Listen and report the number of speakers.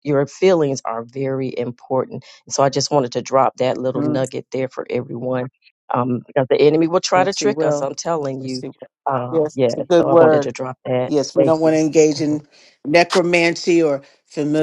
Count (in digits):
2